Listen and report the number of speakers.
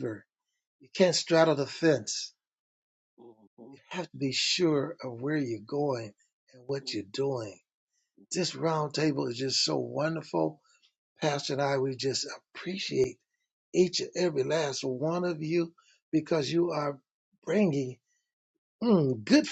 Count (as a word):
one